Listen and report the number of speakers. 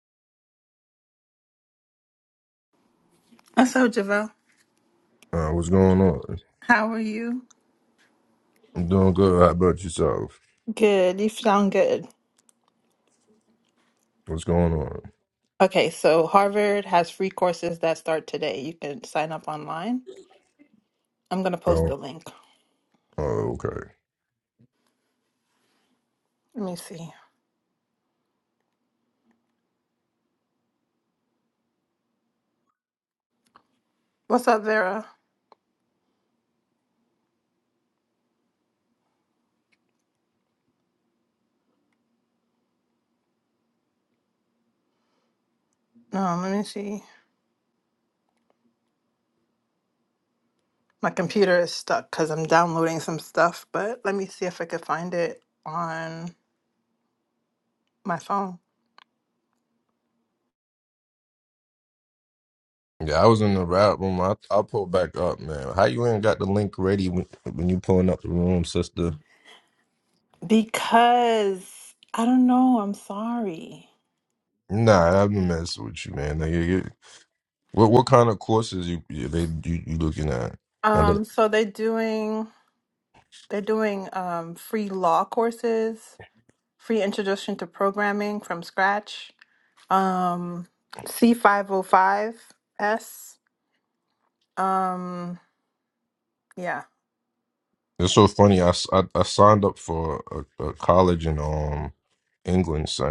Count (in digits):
2